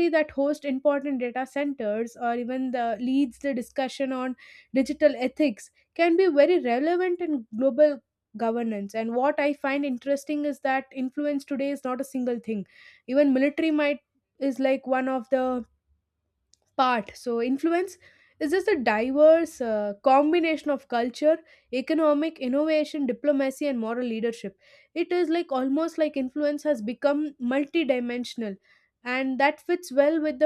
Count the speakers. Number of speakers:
one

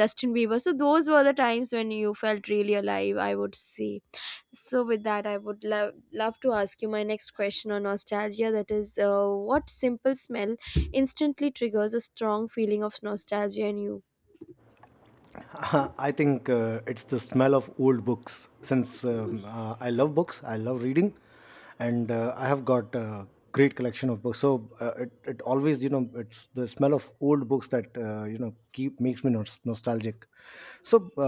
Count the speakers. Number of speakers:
two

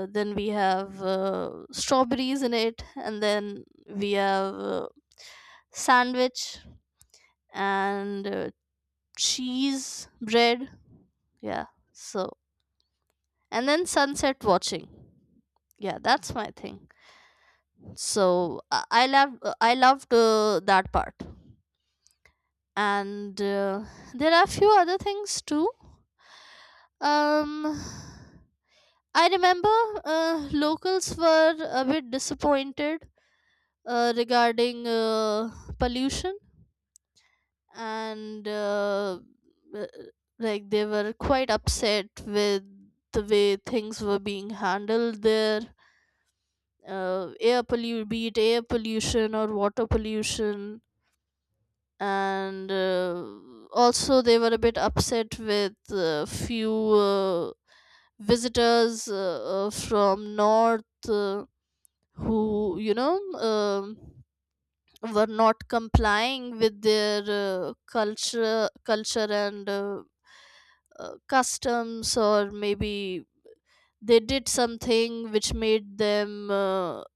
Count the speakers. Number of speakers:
one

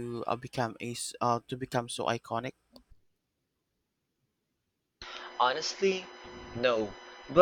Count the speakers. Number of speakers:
two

